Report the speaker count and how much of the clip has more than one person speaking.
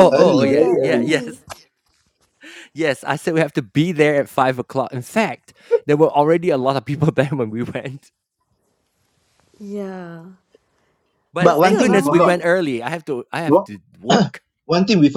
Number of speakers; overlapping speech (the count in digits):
3, about 17%